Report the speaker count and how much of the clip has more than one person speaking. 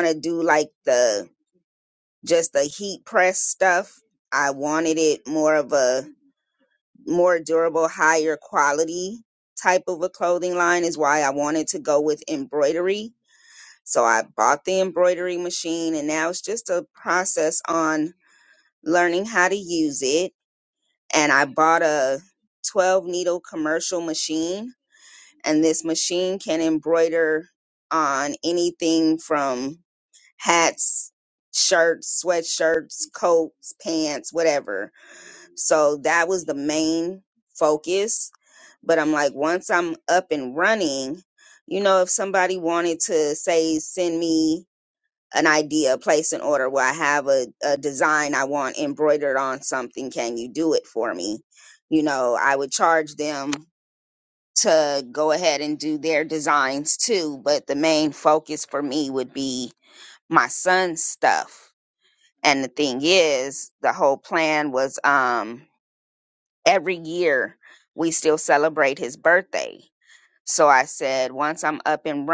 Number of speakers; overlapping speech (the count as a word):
one, no overlap